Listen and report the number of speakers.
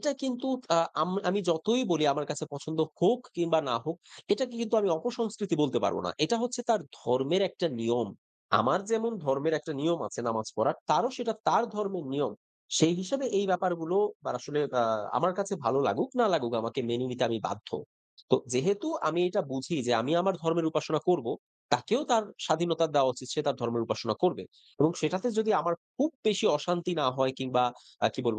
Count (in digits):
1